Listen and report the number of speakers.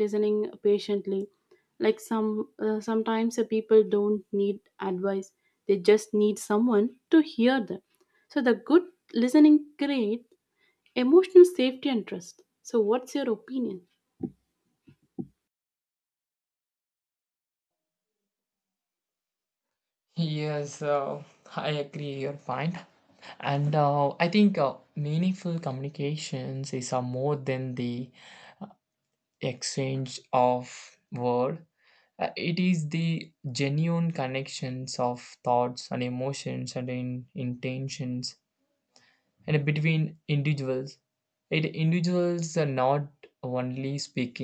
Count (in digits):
2